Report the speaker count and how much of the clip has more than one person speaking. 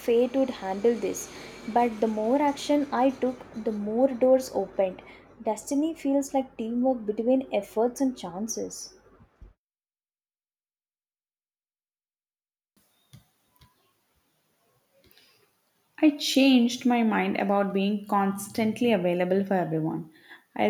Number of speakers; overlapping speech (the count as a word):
two, no overlap